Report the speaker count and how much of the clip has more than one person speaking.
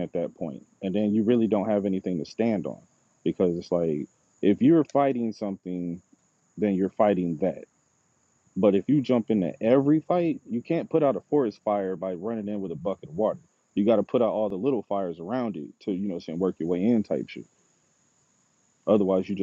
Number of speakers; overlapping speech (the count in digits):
1, no overlap